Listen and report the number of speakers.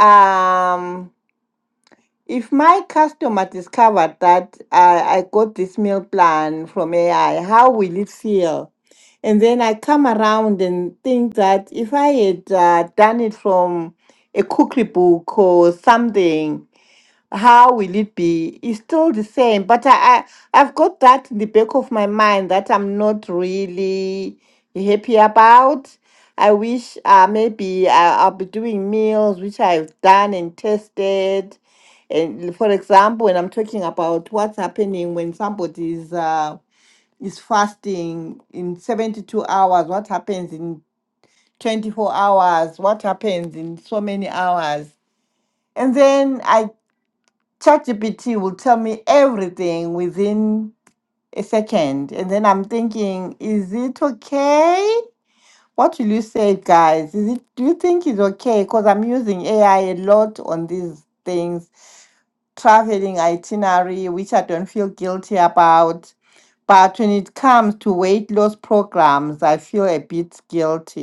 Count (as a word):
one